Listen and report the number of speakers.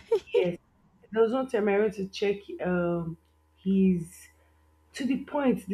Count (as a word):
one